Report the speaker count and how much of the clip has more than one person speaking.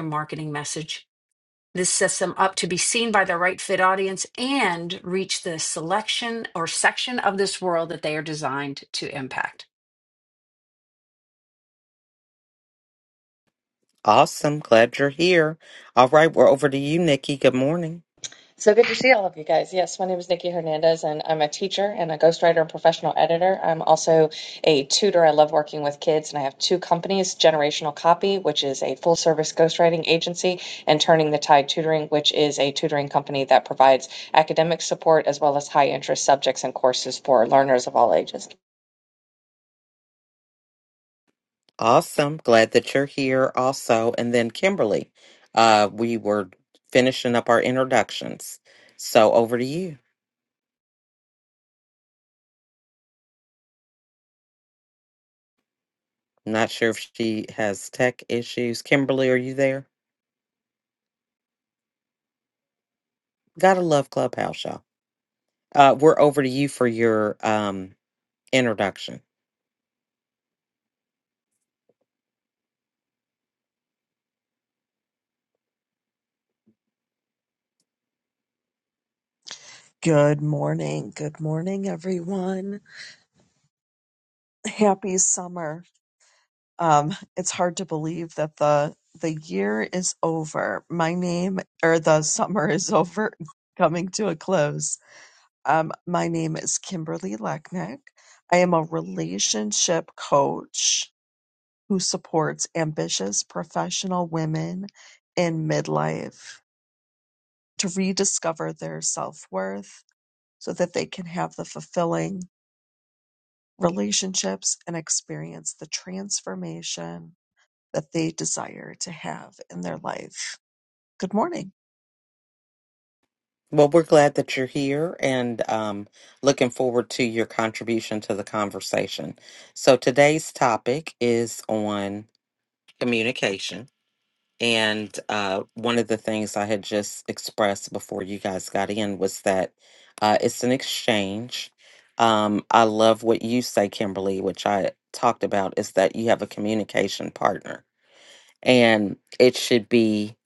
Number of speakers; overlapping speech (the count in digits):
4, no overlap